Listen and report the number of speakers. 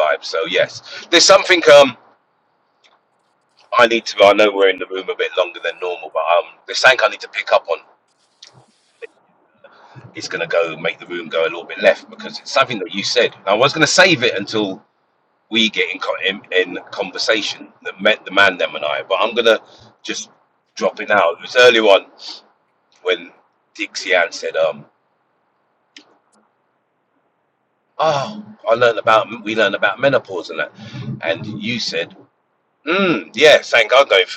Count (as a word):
one